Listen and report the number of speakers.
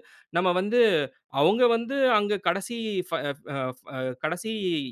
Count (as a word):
one